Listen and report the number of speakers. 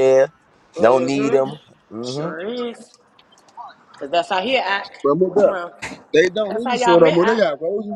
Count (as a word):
three